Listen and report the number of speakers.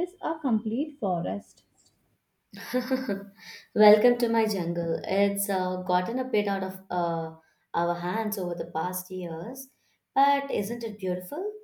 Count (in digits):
2